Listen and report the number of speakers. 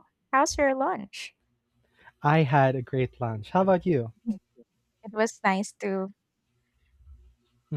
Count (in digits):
2